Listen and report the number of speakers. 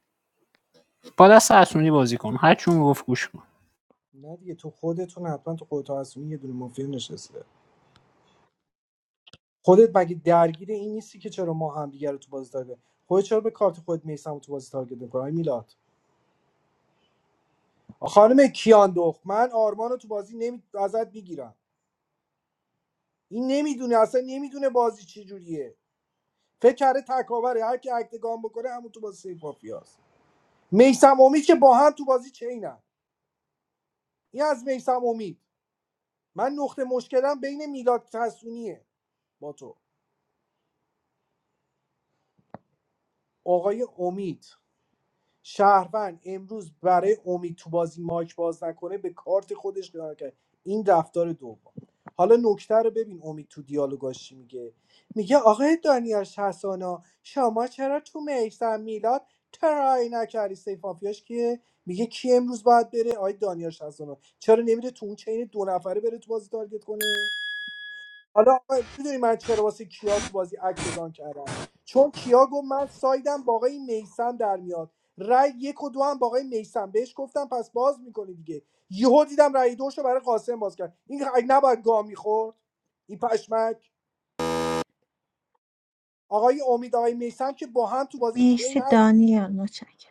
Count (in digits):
3